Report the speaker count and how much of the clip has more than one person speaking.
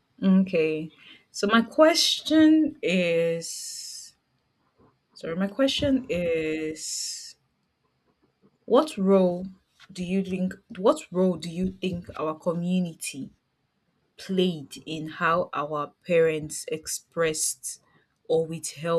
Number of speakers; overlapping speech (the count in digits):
1, no overlap